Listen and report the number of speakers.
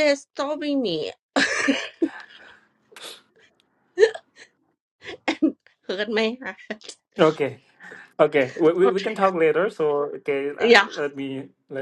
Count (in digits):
2